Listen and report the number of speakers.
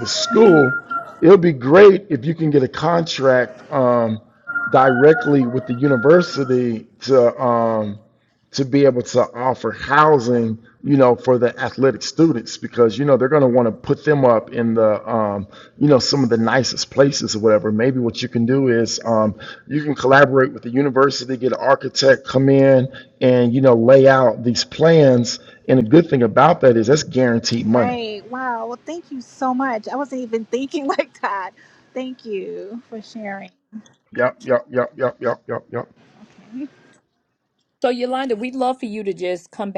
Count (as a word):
three